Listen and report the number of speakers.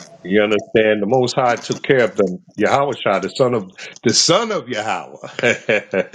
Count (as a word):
one